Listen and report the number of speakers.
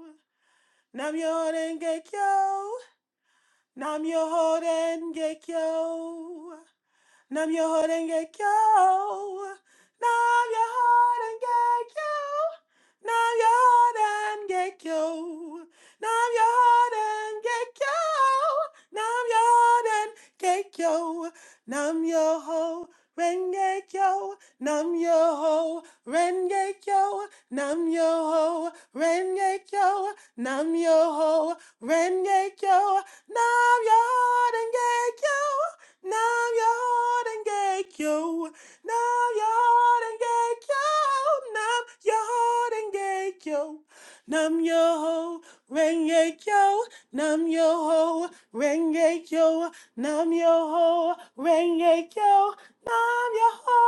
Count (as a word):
one